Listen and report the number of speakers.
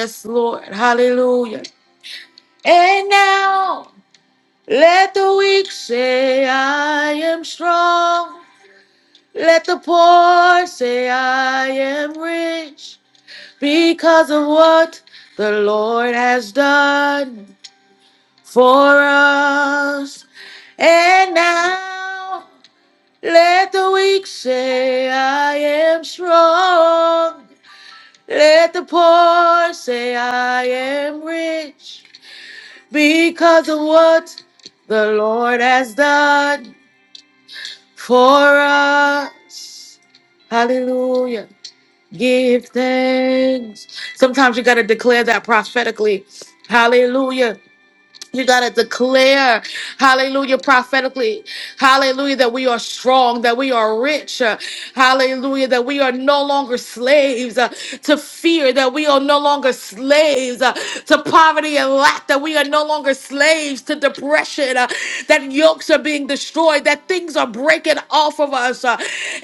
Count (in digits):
1